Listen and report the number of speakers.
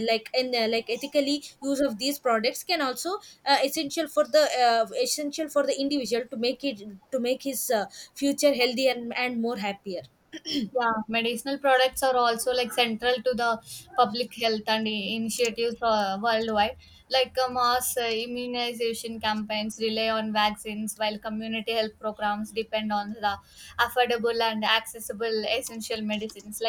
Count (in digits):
2